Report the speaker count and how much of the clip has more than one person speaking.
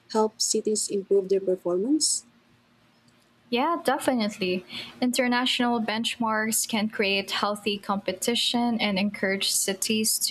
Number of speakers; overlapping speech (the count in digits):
2, no overlap